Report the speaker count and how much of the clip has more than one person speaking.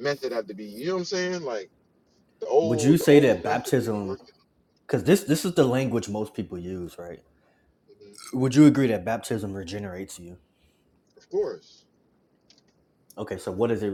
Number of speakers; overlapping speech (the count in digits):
2, about 11%